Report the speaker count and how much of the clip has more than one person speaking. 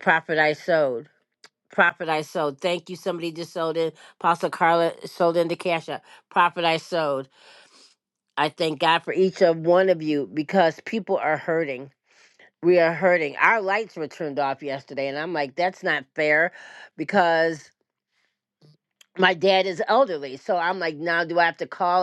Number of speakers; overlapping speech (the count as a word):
one, no overlap